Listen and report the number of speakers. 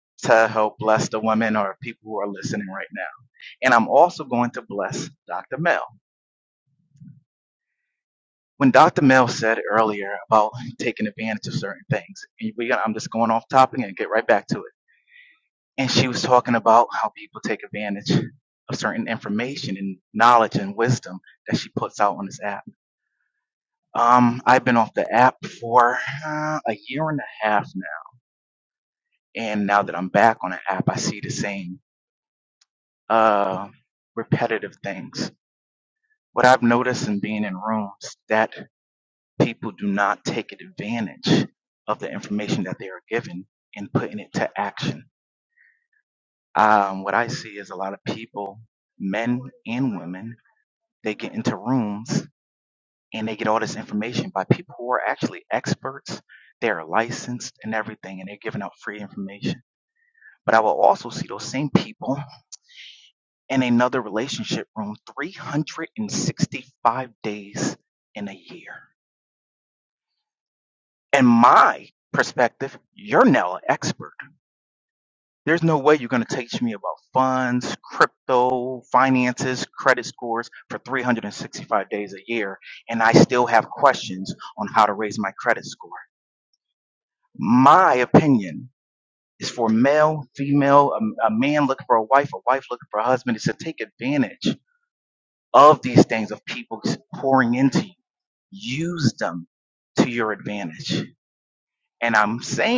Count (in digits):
1